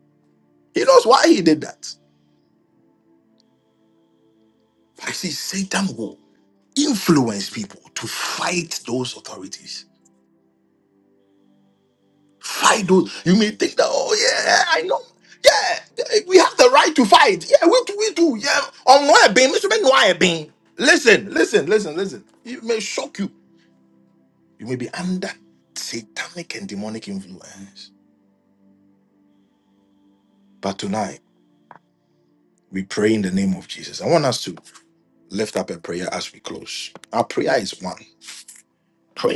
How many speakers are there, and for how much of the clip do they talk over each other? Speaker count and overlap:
1, no overlap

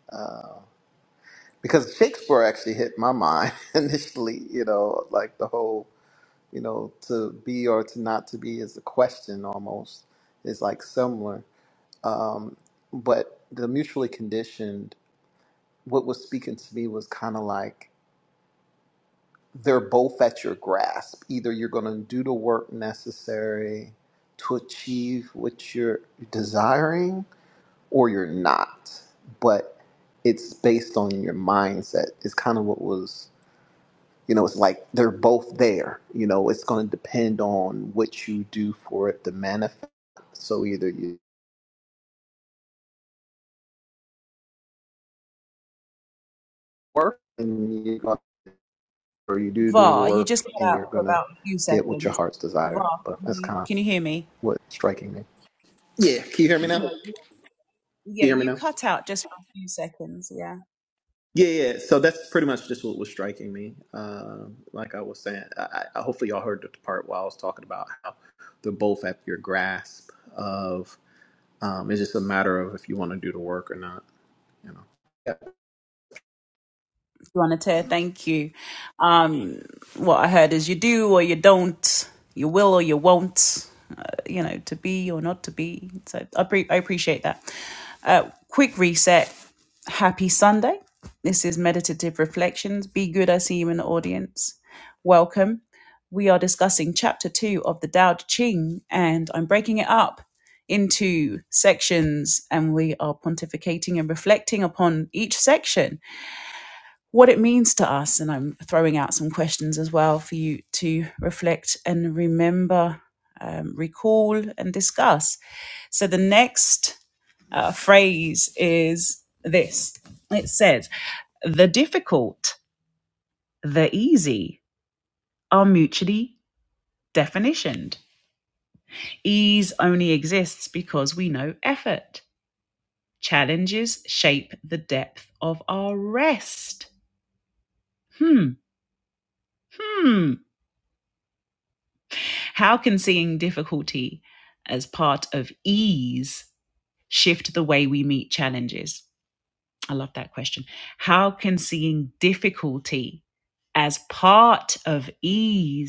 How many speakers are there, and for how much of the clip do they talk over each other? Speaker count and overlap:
2, about 2%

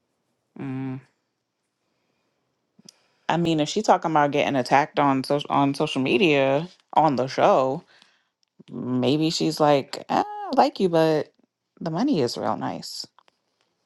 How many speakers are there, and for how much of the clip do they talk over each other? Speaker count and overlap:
1, no overlap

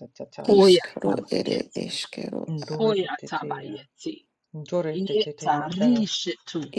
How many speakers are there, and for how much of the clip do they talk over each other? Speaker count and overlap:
3, about 53%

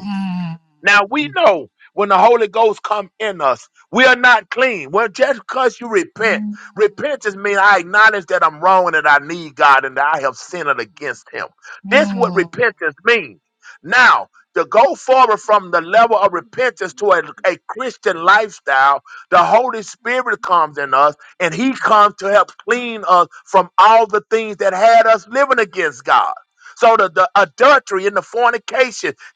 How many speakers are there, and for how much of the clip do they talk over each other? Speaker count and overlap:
2, about 3%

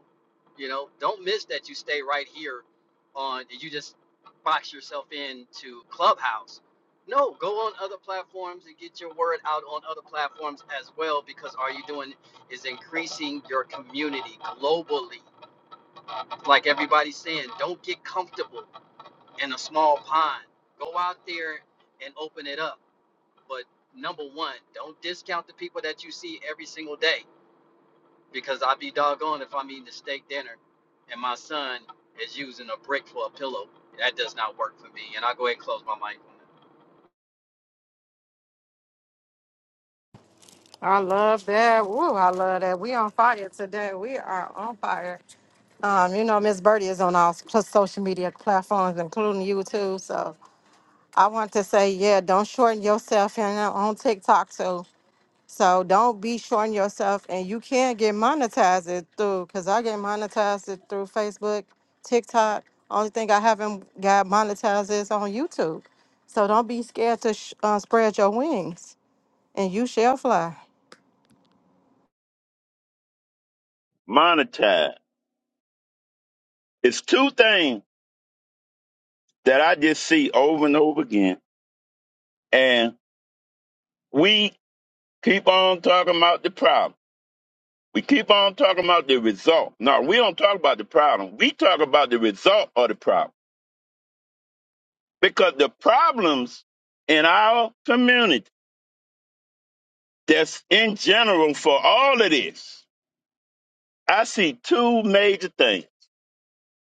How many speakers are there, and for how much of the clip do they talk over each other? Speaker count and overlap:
3, no overlap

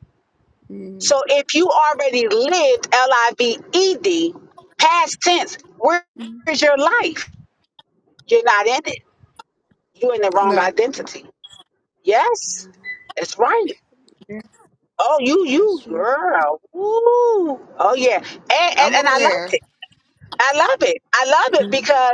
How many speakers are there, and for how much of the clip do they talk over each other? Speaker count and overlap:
2, about 9%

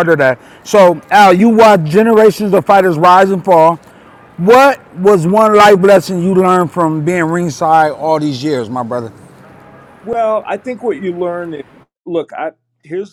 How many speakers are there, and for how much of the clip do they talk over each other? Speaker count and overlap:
2, no overlap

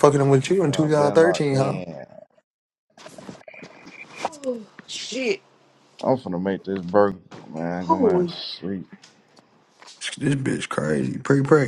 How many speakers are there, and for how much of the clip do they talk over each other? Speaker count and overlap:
3, about 14%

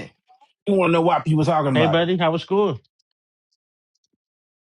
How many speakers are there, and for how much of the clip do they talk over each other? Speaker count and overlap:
2, about 6%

